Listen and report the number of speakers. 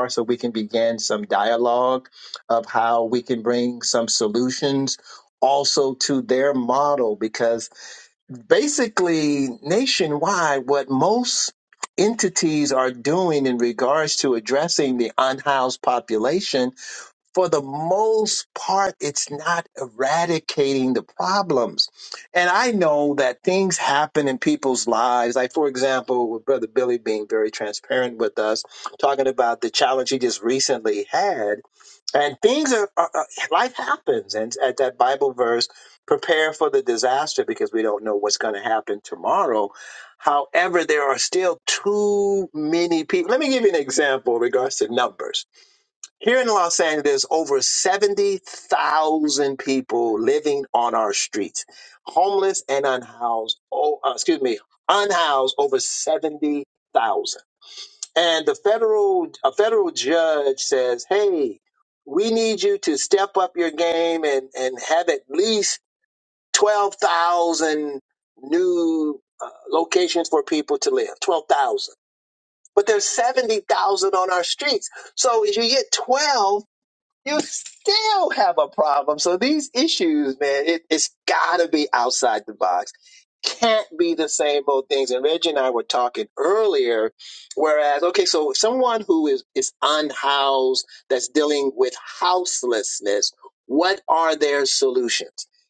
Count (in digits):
1